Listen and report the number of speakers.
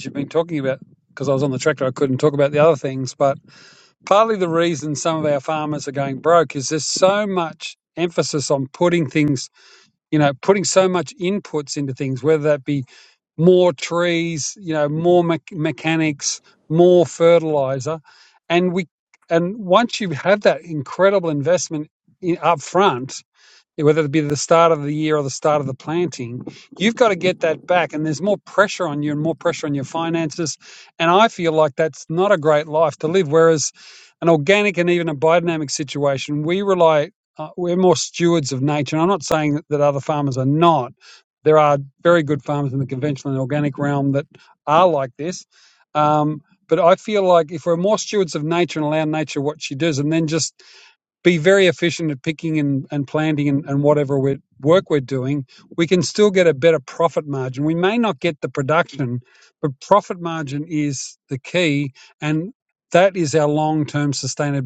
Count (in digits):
1